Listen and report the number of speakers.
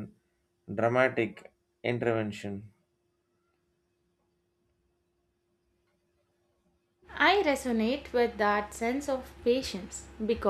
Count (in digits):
2